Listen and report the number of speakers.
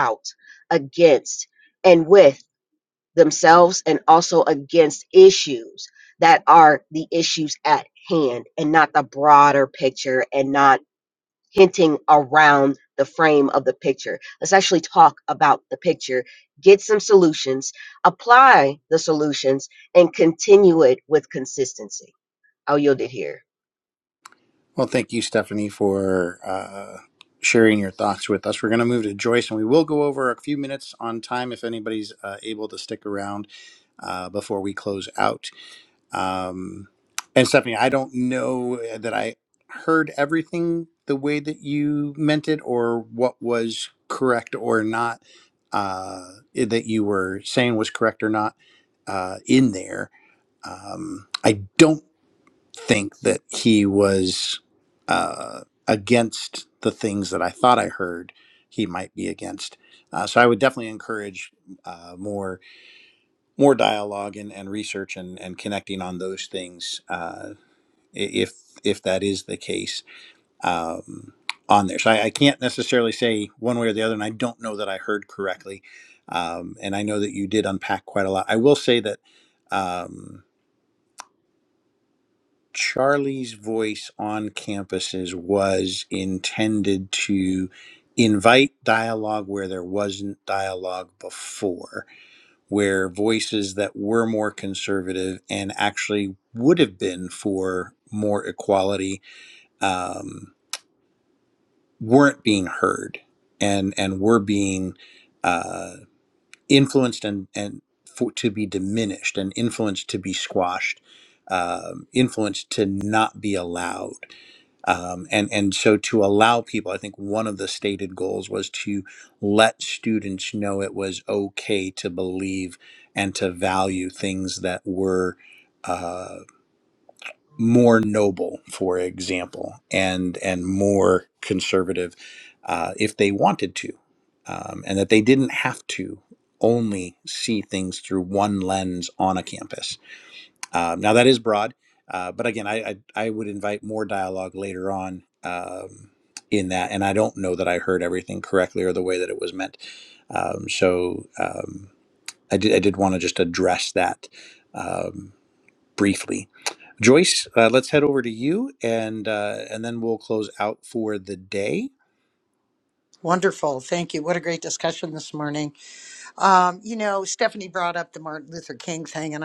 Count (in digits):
3